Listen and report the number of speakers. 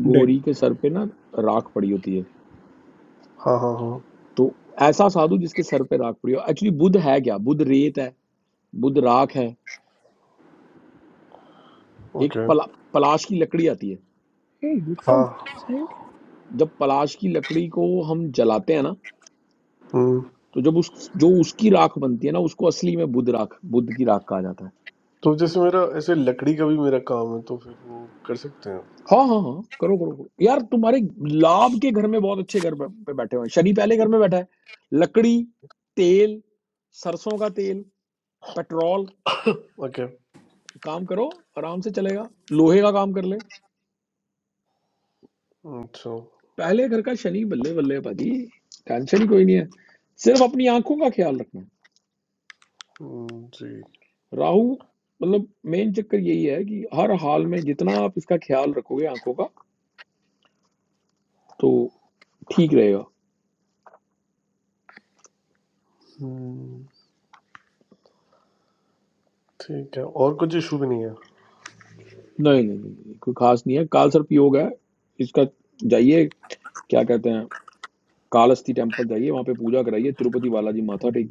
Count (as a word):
three